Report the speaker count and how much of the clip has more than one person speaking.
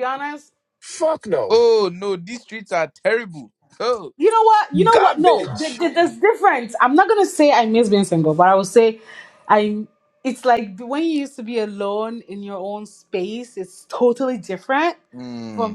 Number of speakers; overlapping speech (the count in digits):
3, about 8%